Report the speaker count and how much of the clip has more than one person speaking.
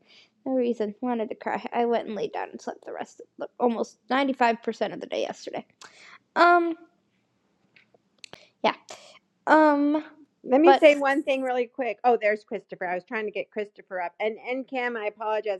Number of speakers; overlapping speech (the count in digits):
2, about 1%